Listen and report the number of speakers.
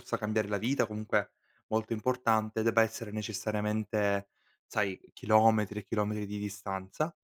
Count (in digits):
1